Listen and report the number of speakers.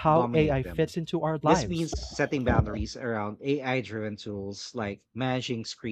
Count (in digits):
2